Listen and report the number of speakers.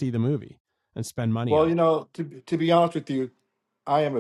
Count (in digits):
2